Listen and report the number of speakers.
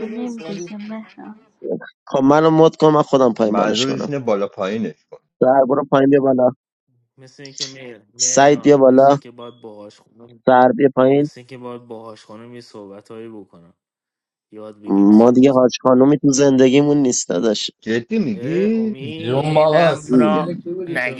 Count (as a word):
five